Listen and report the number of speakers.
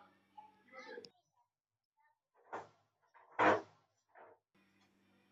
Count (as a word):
zero